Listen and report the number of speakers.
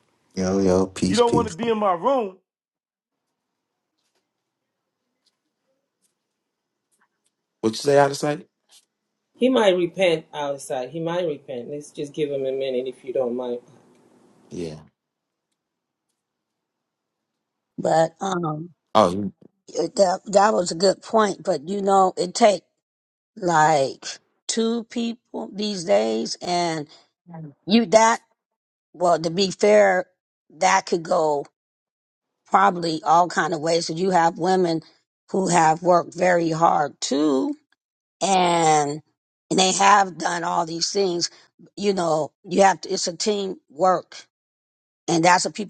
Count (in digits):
5